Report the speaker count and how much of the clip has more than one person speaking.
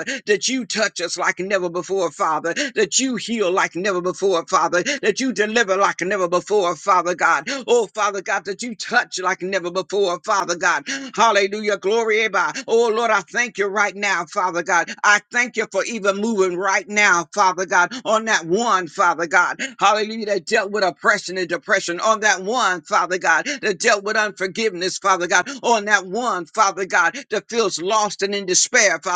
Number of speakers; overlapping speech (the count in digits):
1, no overlap